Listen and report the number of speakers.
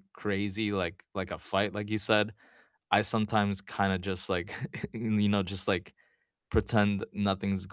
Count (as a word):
one